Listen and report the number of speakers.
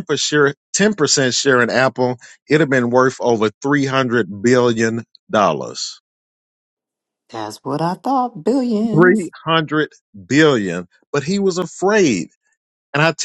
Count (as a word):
two